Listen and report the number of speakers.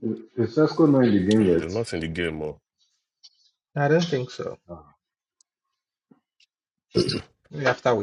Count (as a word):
three